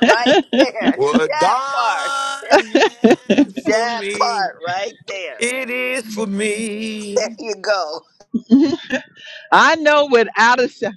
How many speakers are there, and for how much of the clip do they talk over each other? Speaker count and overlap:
three, about 20%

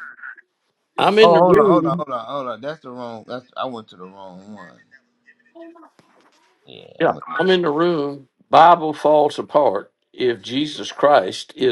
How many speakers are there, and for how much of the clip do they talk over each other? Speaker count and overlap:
two, about 9%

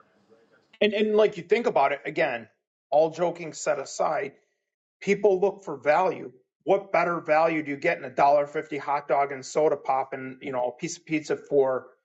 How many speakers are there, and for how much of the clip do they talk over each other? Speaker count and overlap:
one, no overlap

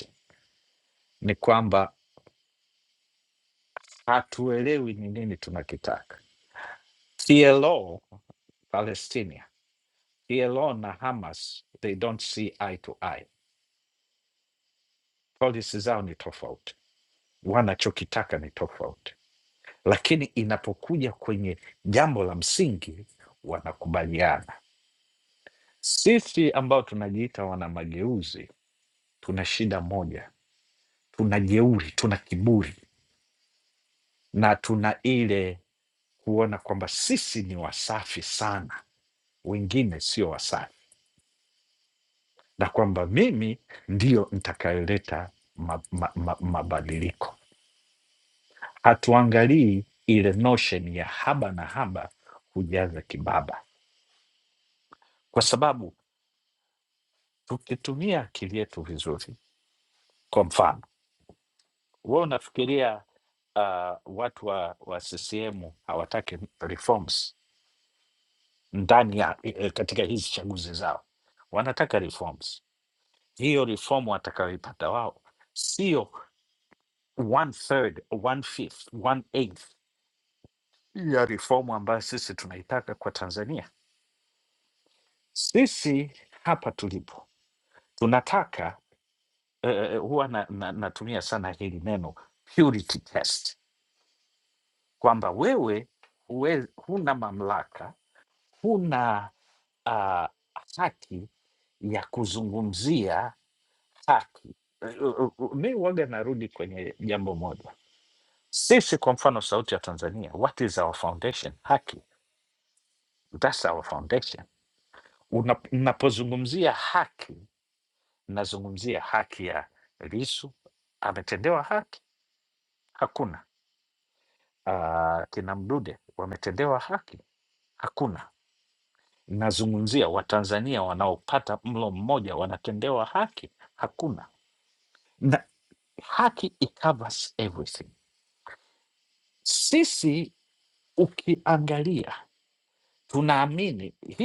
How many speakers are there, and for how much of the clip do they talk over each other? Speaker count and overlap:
one, no overlap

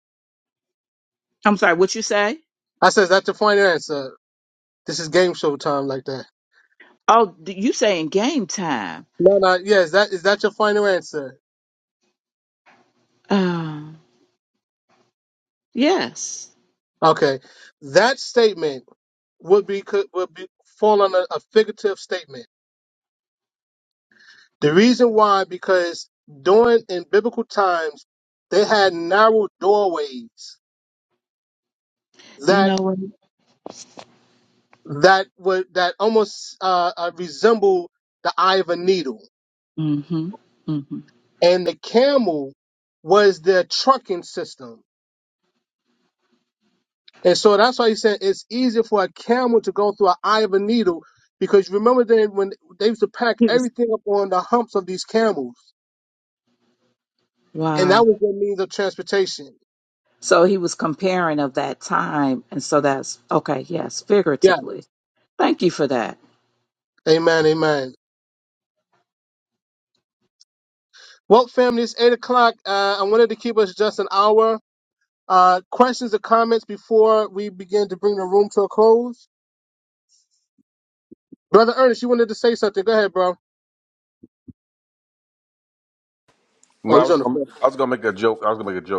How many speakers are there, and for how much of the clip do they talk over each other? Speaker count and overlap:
three, about 2%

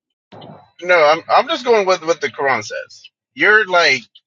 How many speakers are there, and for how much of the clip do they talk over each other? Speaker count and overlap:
one, no overlap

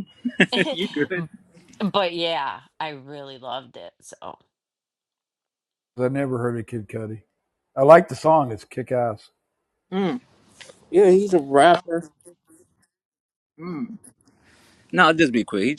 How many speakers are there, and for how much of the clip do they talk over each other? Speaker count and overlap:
three, no overlap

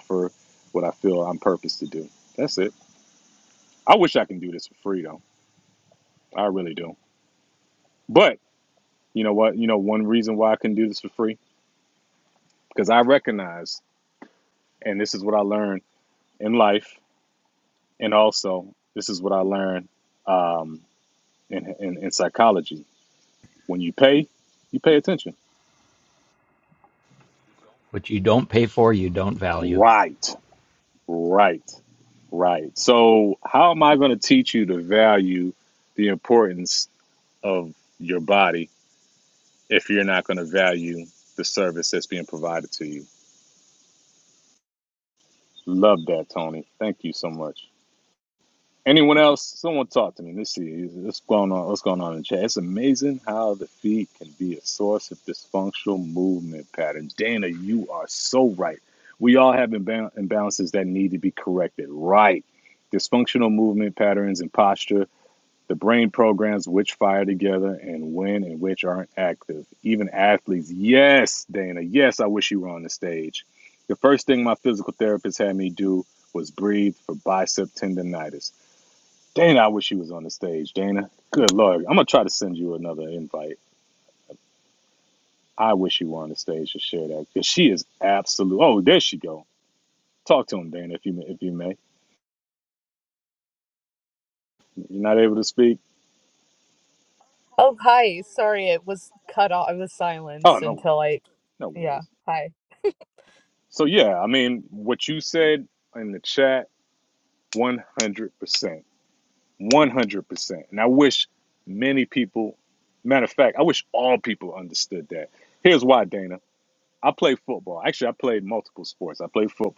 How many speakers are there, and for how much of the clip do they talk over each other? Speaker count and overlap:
three, about 1%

